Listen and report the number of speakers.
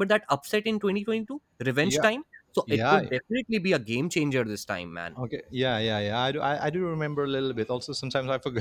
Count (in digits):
2